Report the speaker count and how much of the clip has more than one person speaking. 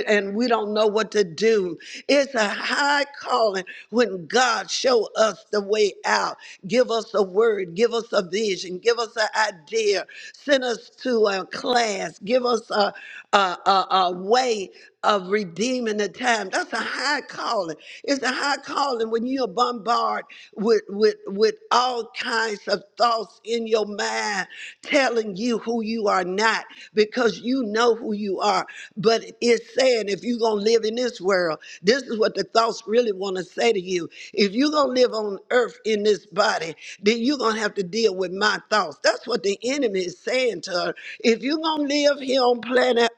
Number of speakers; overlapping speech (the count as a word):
one, no overlap